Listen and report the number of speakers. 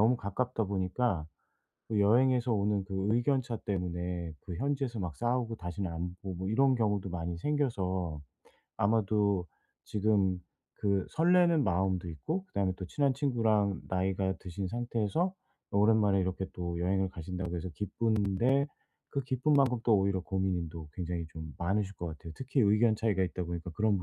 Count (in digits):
1